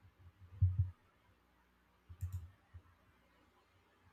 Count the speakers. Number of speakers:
0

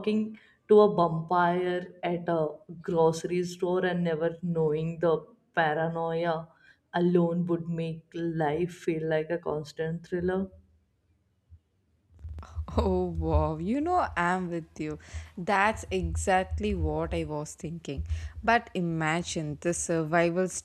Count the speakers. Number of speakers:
2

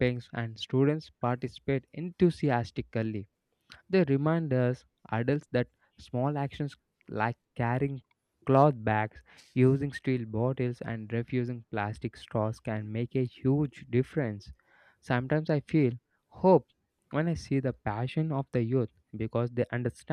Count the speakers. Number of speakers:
1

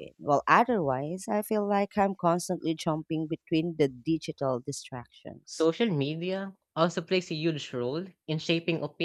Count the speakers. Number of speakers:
2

